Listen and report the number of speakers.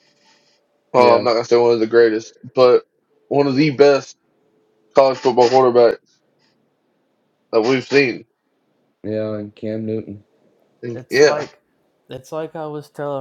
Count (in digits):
3